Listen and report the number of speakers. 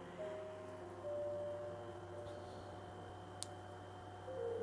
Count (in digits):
0